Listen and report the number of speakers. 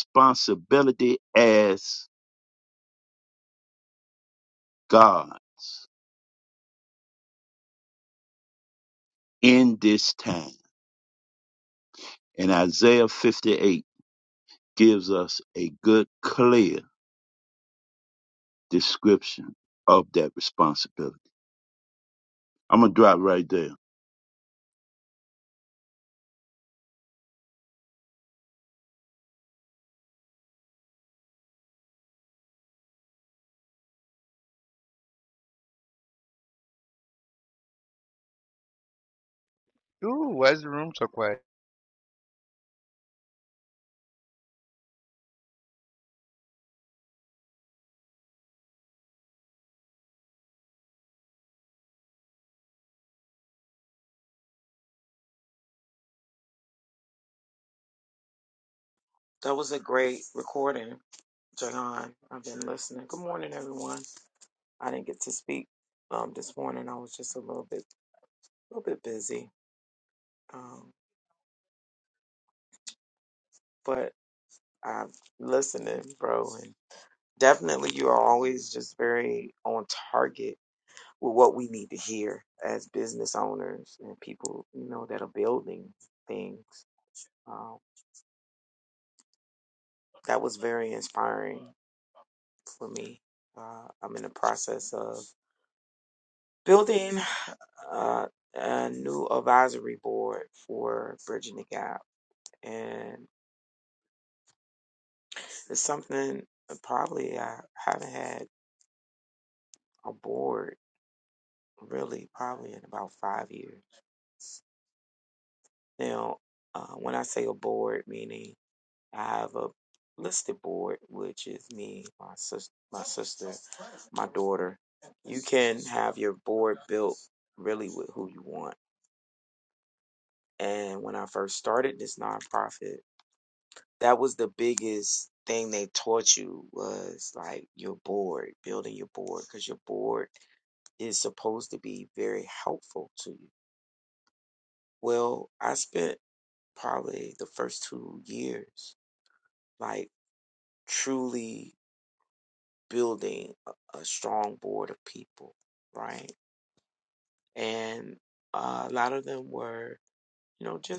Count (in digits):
3